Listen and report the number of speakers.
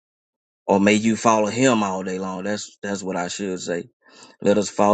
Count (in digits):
1